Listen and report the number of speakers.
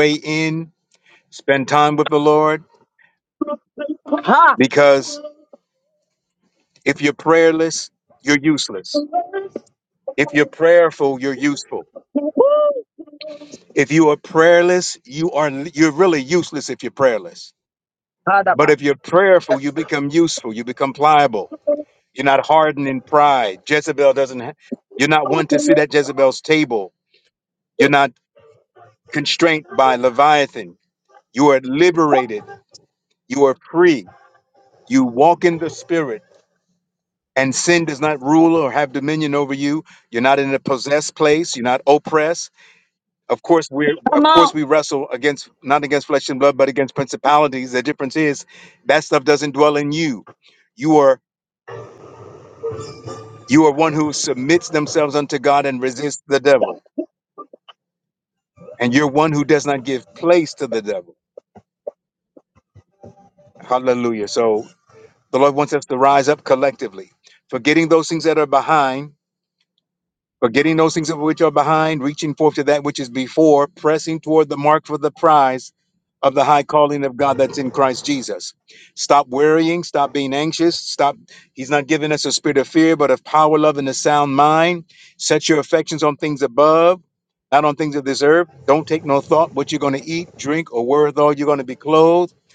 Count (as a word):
two